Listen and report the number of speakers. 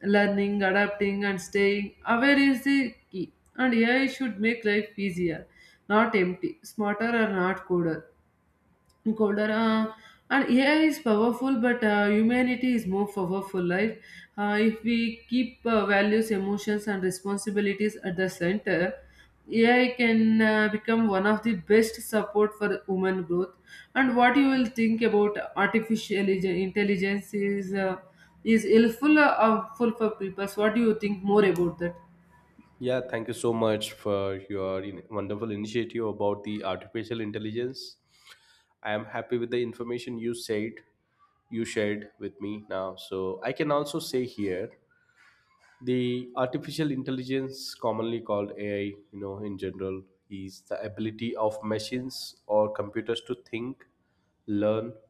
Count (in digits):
2